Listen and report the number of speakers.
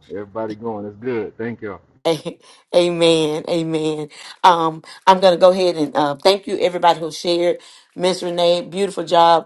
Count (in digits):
2